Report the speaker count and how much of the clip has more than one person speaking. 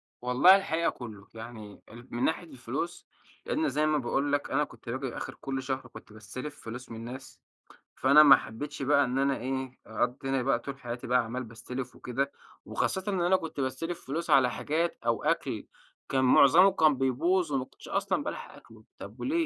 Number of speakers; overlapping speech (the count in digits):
1, no overlap